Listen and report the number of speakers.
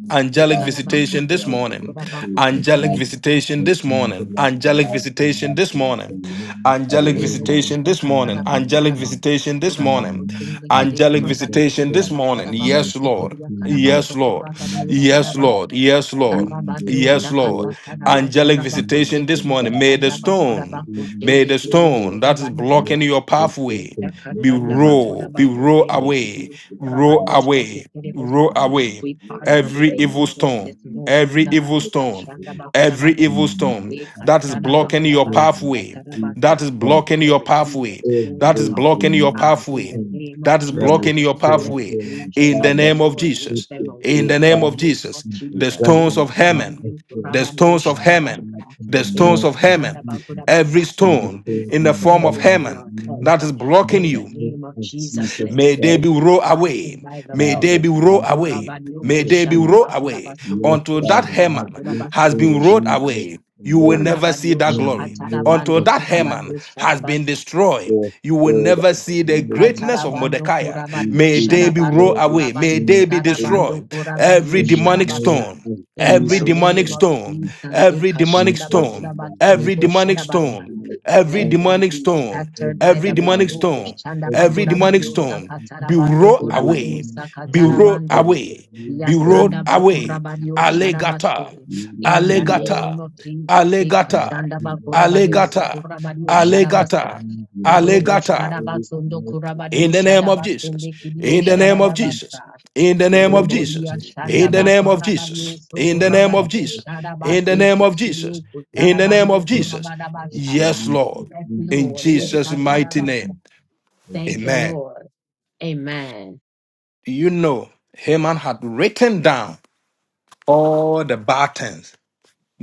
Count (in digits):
3